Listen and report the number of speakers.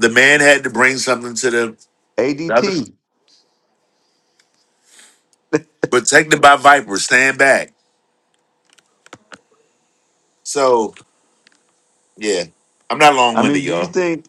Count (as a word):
two